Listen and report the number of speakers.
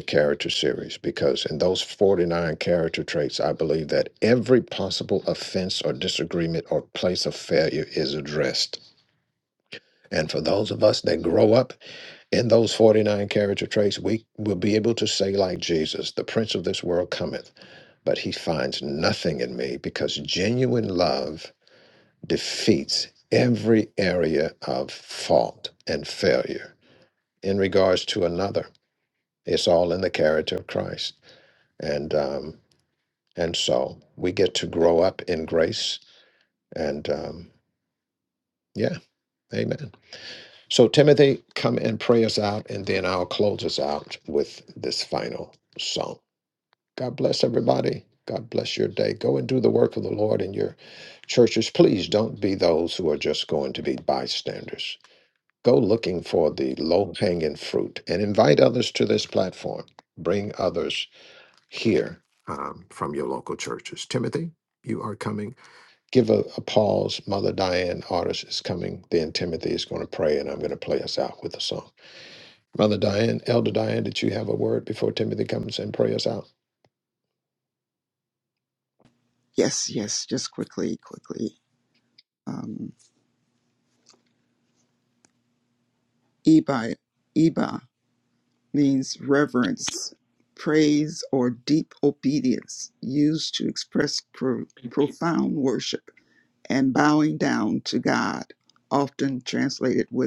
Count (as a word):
two